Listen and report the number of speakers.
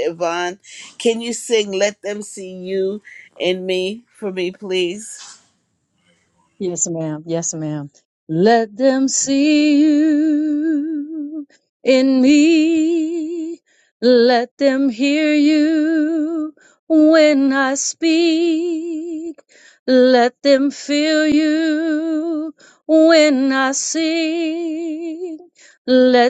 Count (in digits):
2